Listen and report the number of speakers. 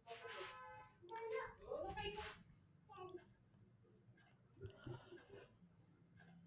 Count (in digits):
0